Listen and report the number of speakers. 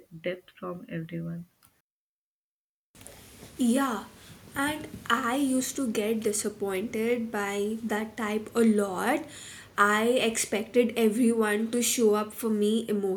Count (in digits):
2